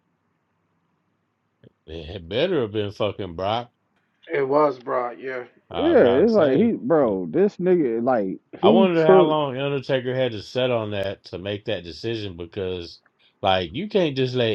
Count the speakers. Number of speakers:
3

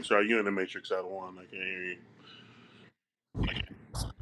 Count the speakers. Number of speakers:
1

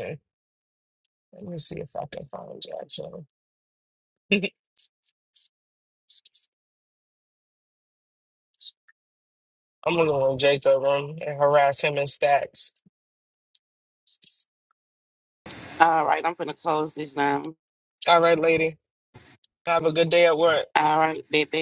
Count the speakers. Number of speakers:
2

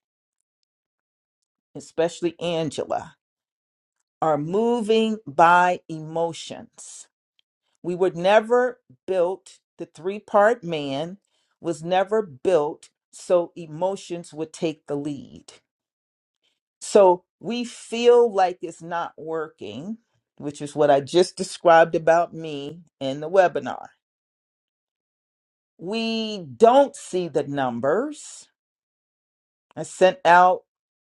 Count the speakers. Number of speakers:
1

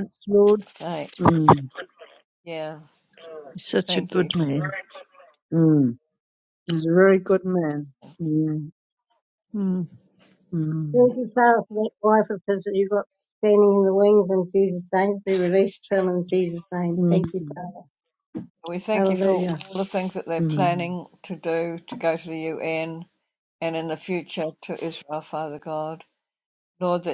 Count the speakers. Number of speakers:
4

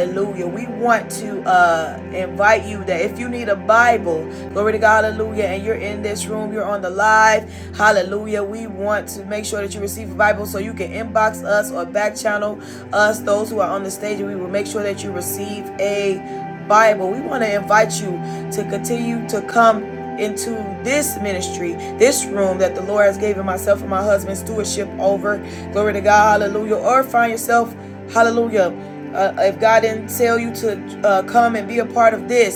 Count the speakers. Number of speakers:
1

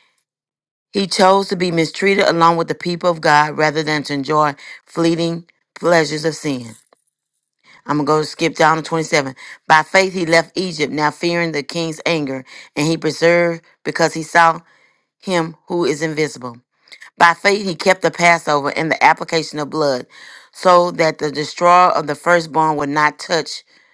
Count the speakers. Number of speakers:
1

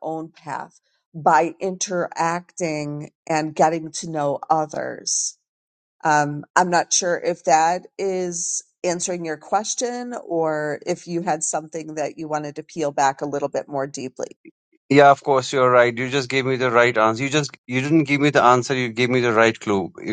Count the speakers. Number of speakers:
2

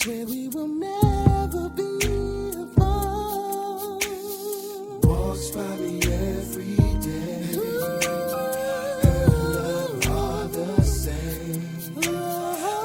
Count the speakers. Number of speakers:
0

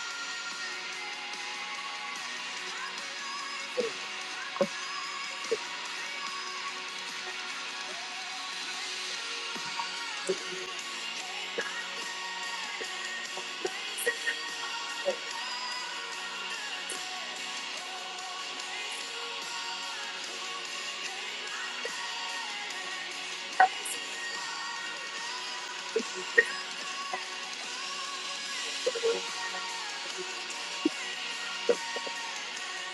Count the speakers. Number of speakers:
0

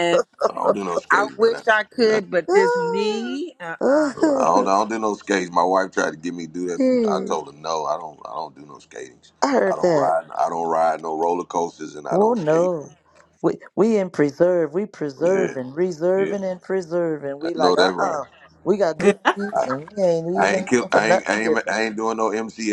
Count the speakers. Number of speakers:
3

